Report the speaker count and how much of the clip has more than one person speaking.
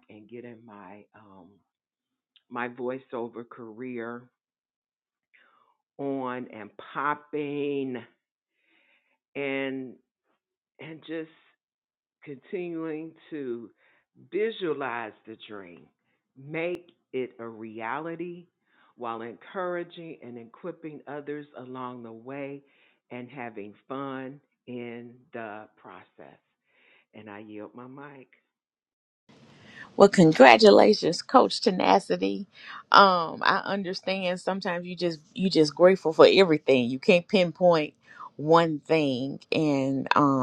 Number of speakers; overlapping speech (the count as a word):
two, no overlap